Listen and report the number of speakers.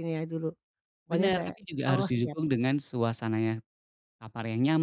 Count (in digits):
2